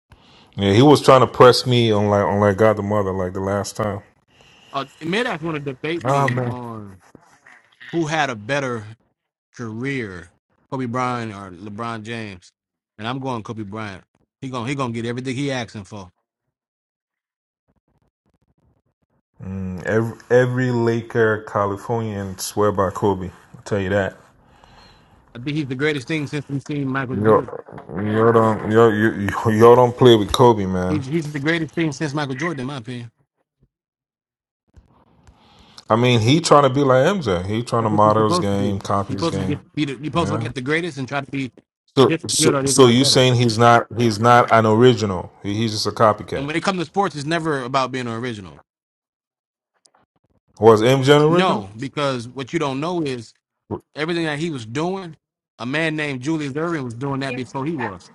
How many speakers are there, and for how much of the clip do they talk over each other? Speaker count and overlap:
2, about 7%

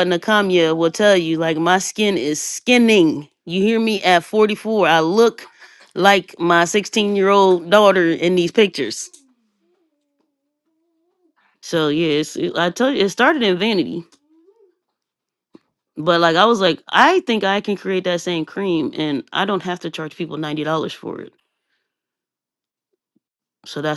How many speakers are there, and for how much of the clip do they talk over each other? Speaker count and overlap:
1, no overlap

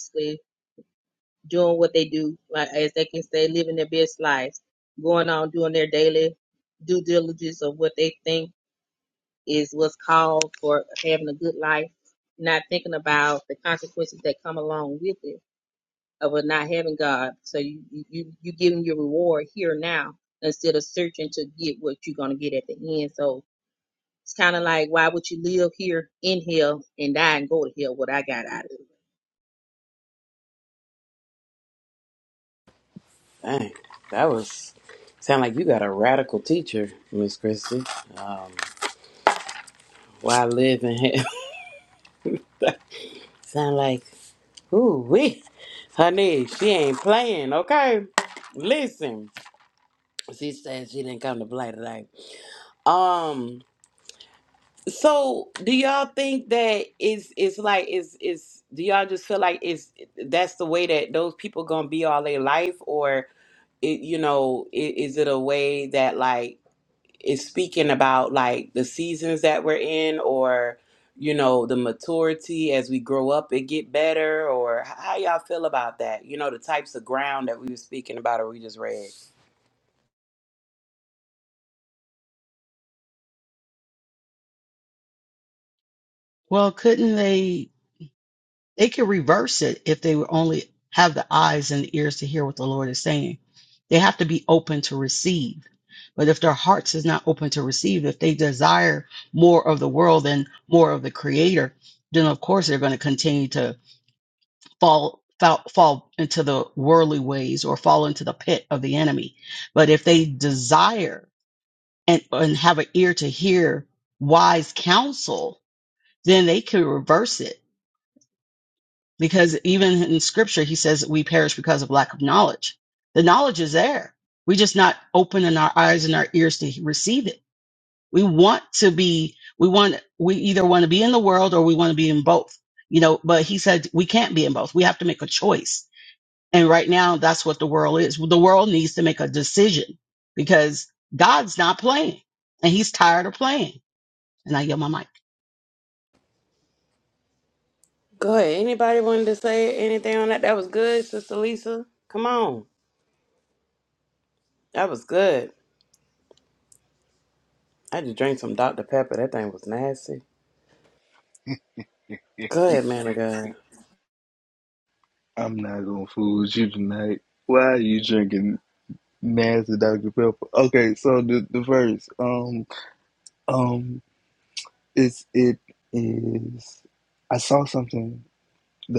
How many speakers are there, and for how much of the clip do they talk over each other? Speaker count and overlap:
4, no overlap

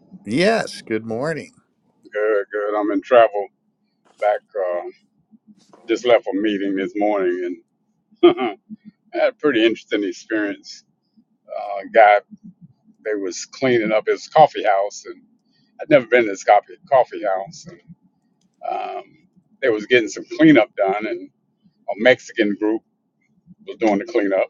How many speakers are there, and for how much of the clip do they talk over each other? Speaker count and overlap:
2, no overlap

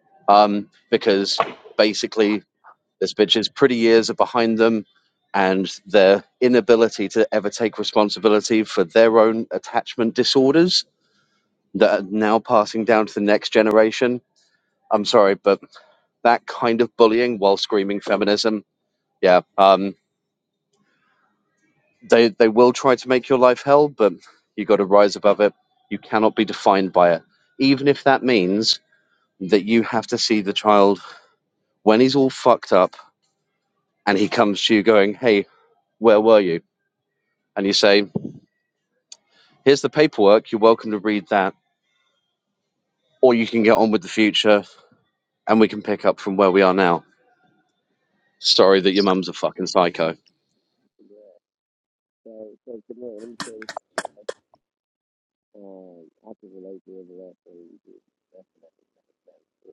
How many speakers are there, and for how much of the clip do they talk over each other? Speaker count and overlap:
2, no overlap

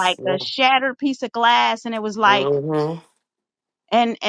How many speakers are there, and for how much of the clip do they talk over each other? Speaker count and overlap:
2, about 15%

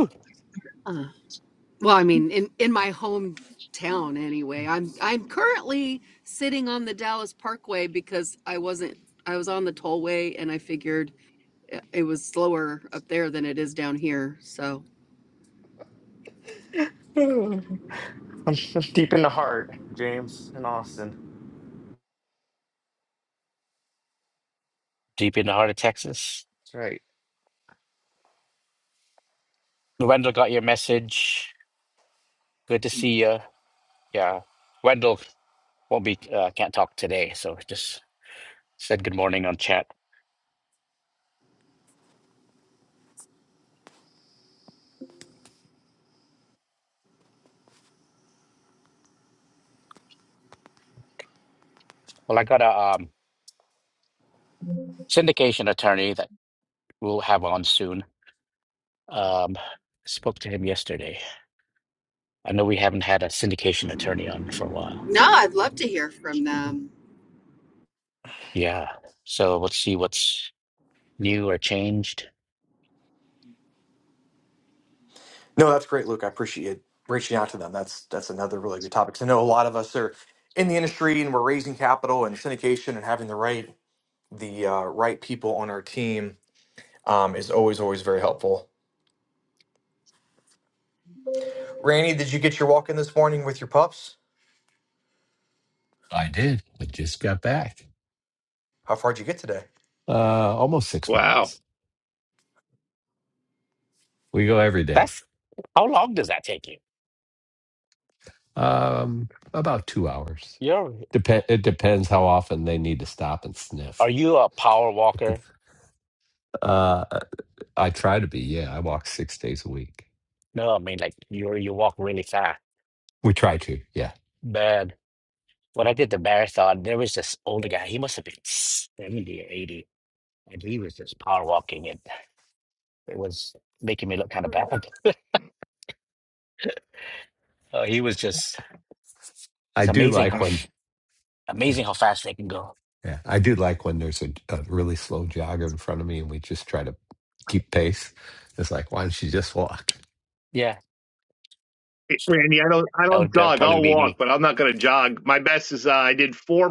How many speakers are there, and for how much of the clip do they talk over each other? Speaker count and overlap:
6, about 1%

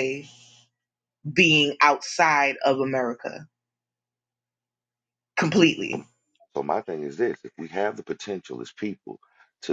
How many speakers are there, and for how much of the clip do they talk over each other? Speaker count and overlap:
2, about 1%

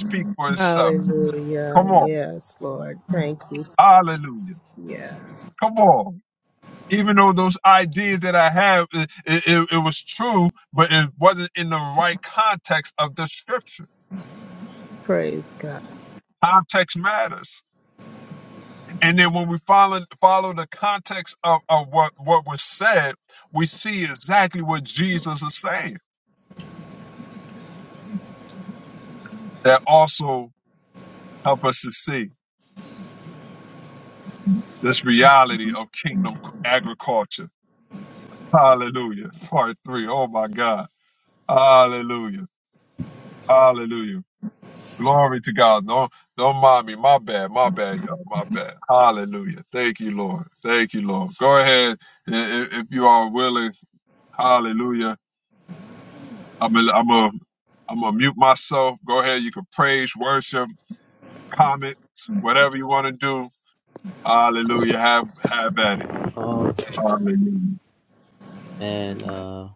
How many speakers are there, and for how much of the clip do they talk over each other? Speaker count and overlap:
3, about 1%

